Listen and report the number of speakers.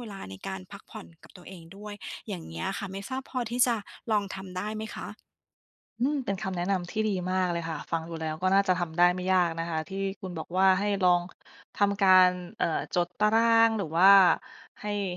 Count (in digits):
2